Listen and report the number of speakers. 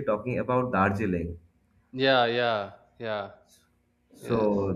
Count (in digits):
2